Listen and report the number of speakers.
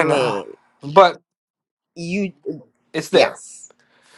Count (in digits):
2